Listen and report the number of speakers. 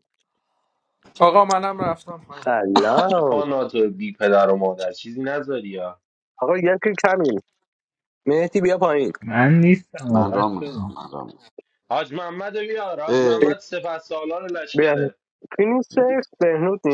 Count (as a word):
five